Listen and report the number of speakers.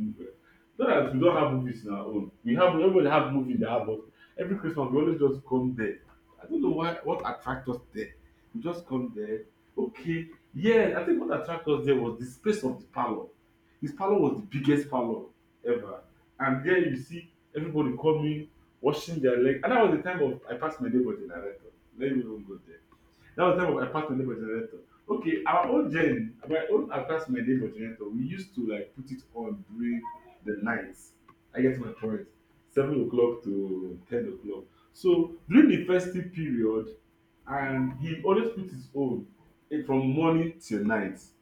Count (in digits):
1